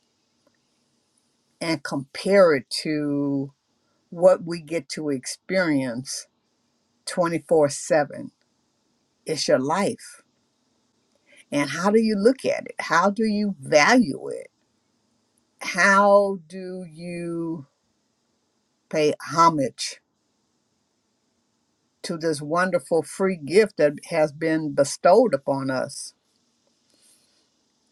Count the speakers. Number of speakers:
one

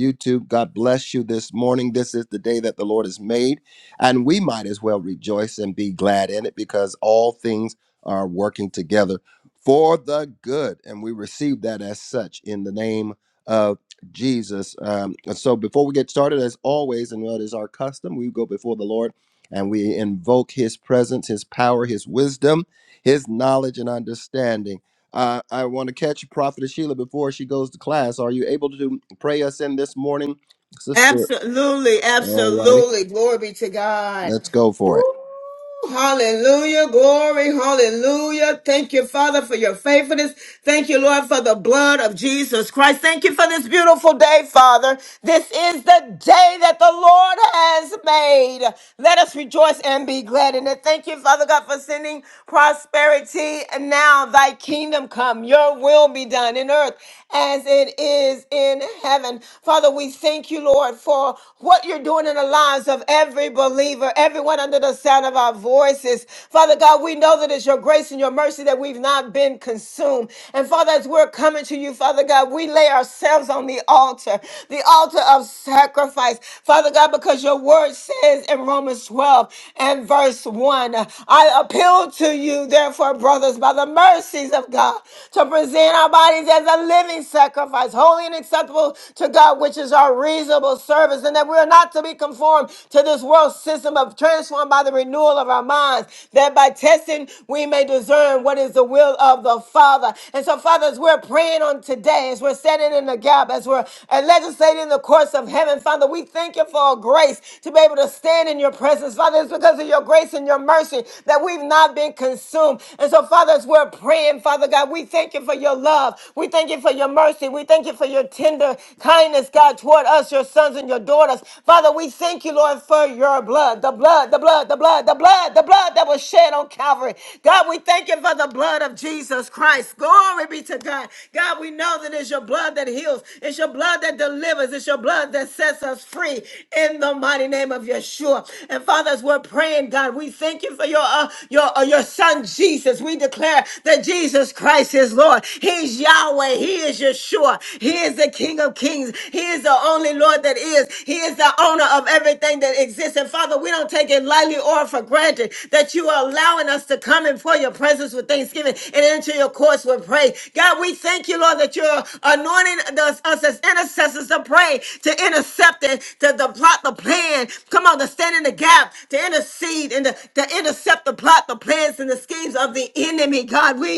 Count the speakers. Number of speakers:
two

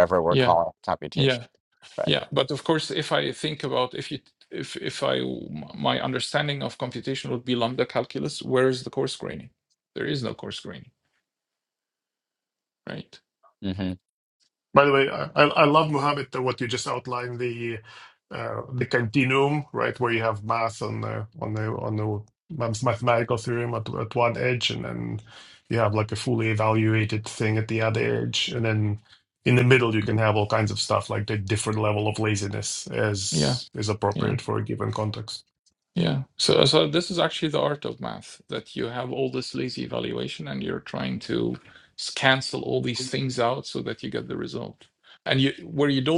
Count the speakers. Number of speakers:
three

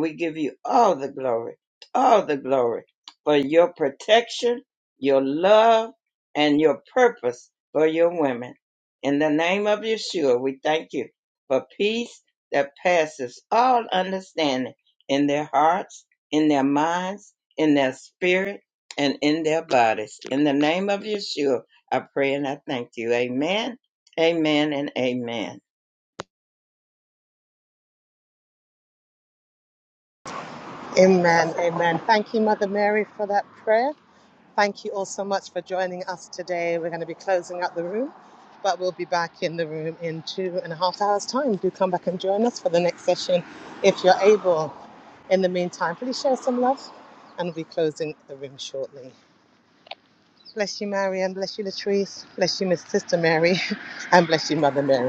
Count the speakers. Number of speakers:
two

